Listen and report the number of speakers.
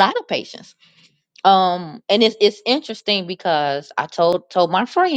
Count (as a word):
one